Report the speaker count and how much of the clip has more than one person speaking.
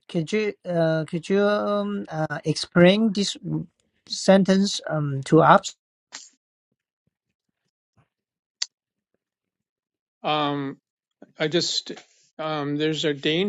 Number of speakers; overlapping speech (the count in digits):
2, no overlap